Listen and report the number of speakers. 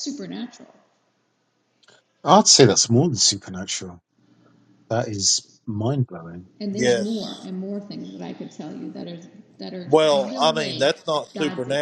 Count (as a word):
three